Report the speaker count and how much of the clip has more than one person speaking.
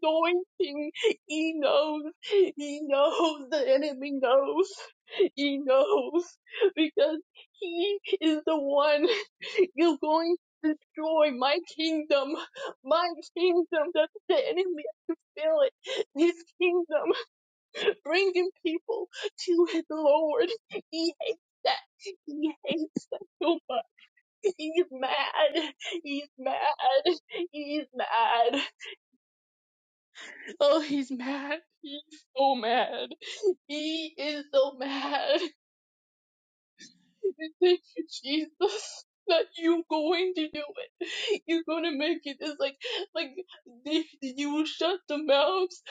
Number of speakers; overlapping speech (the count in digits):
1, no overlap